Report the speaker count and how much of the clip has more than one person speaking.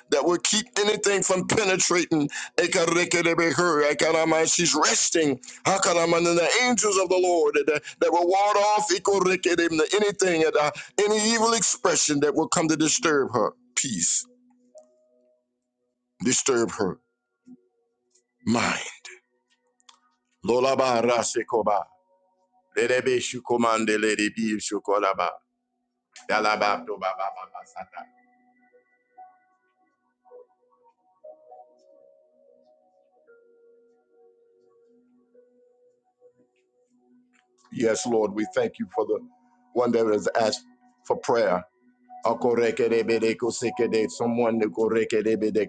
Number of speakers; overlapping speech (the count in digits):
1, no overlap